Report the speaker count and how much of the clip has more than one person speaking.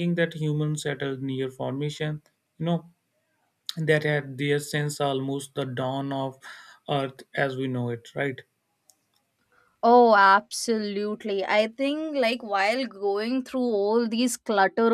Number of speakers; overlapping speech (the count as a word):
two, no overlap